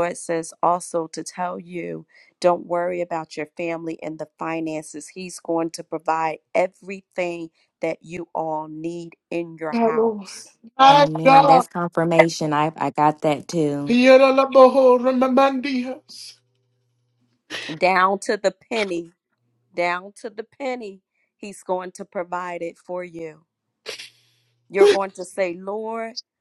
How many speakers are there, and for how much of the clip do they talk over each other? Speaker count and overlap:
three, about 5%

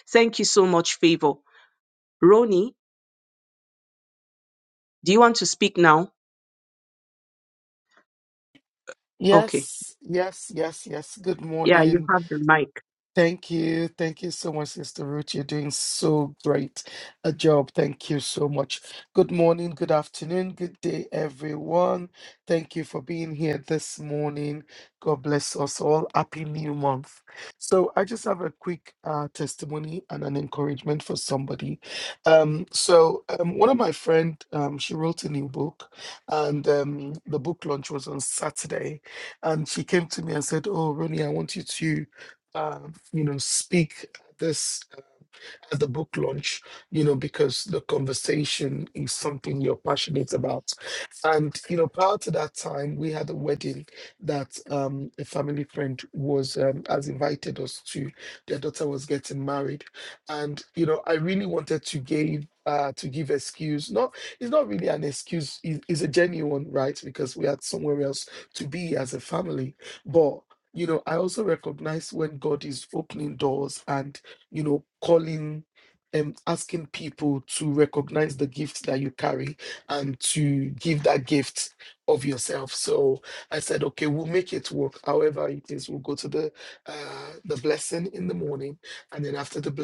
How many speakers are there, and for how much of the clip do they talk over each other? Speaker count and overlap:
two, about 1%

